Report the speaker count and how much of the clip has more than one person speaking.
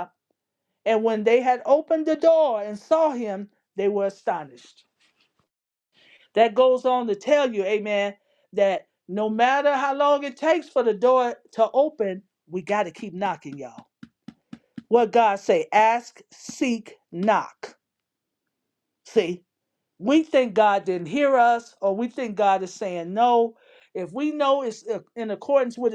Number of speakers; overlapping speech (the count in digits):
1, no overlap